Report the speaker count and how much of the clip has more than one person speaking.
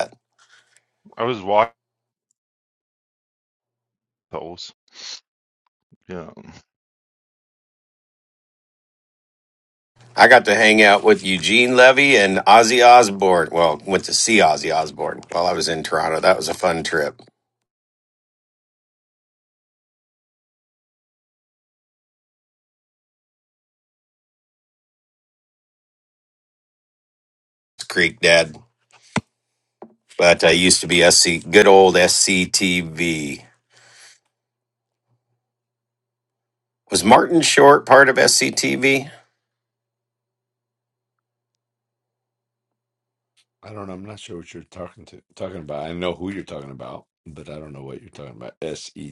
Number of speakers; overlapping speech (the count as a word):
three, no overlap